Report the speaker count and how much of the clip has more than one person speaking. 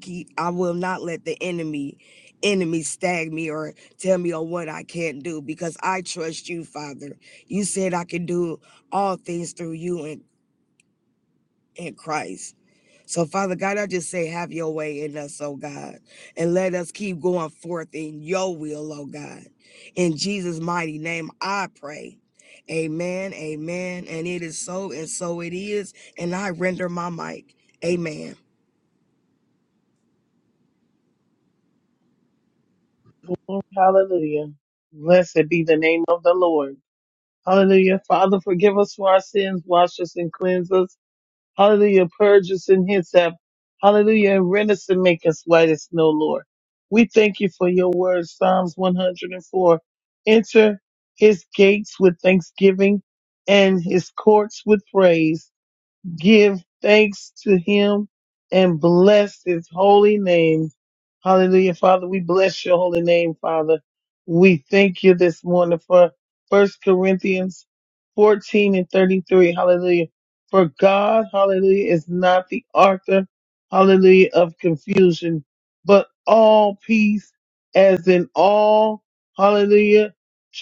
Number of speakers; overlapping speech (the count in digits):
2, no overlap